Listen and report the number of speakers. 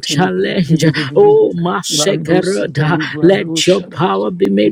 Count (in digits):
2